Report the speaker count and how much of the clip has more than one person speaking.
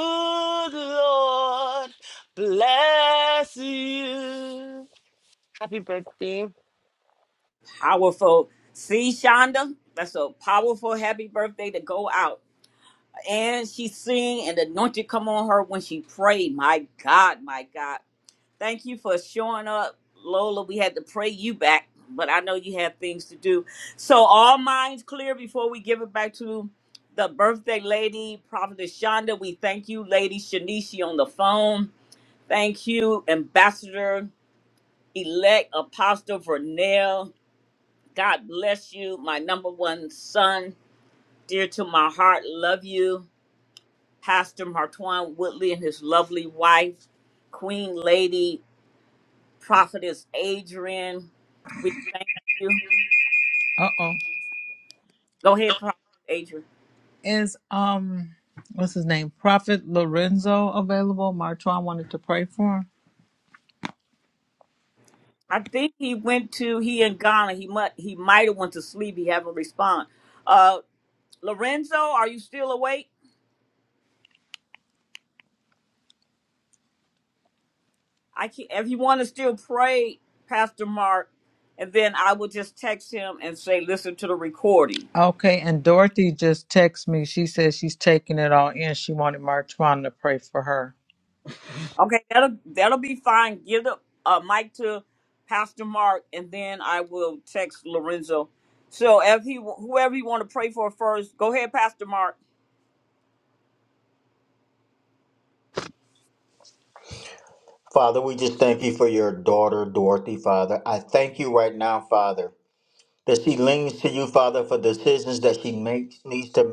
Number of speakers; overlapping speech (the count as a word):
four, no overlap